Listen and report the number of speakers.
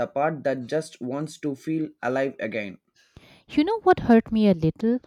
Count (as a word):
two